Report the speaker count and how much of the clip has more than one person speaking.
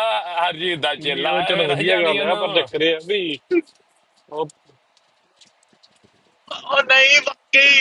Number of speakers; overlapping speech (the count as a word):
three, about 21%